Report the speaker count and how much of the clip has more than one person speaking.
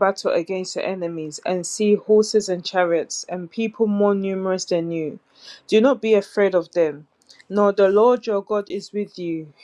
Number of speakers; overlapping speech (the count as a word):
one, no overlap